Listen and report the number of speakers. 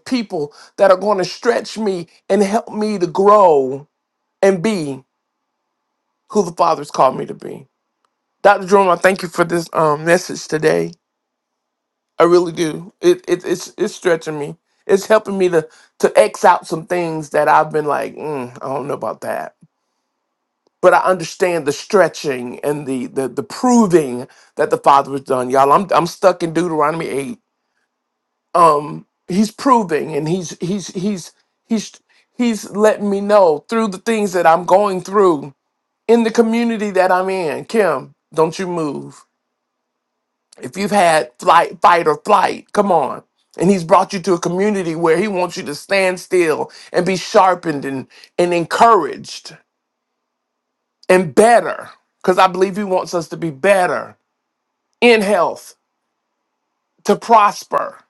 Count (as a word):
one